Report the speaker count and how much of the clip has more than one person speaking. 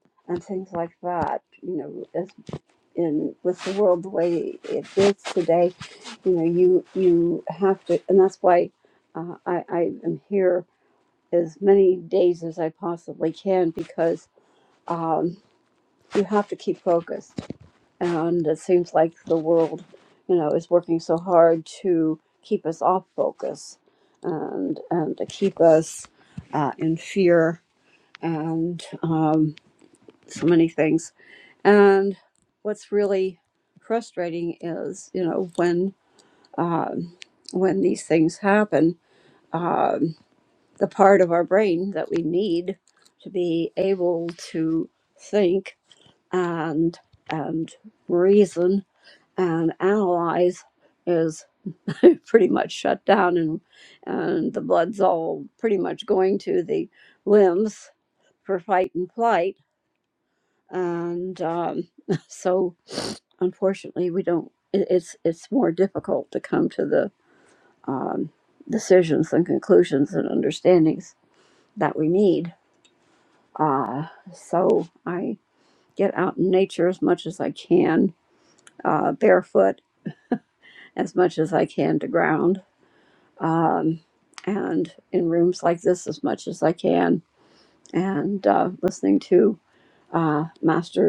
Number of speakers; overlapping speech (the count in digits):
1, no overlap